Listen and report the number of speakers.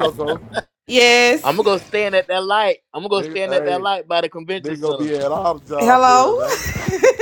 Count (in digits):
3